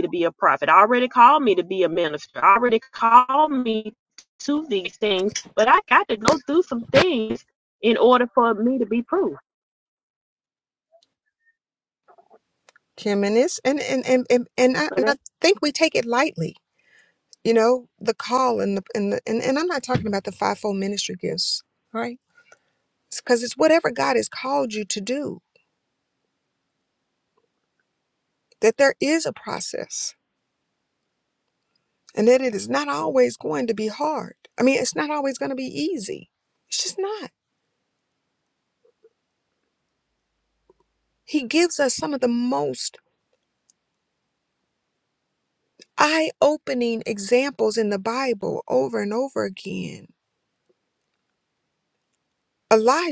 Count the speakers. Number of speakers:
two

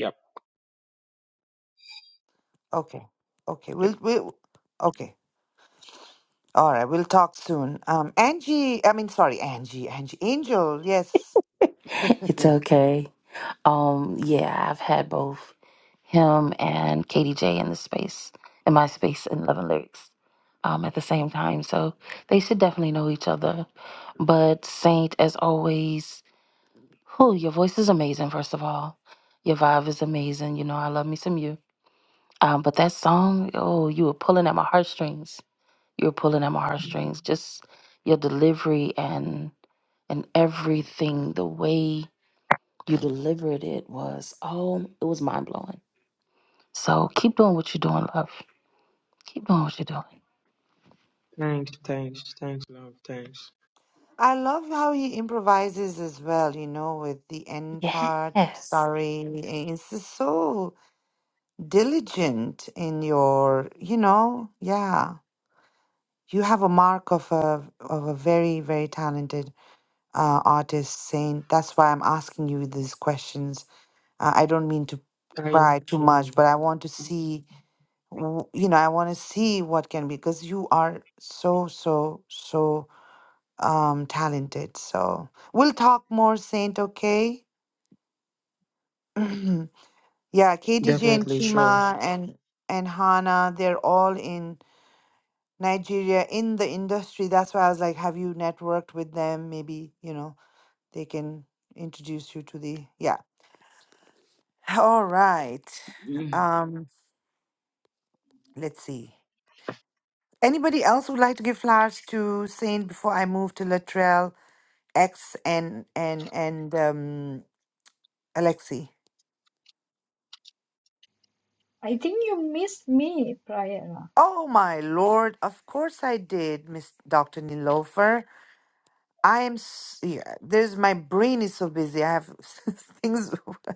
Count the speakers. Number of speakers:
four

